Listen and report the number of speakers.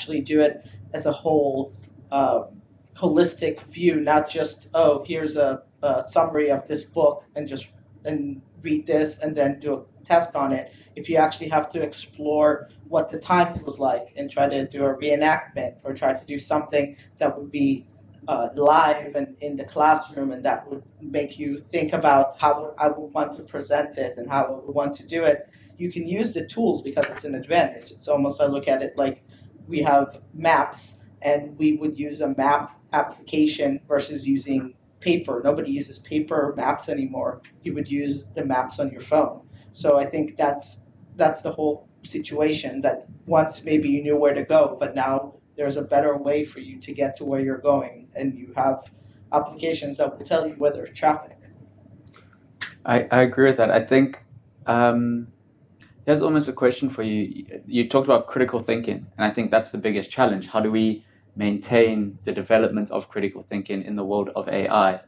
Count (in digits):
2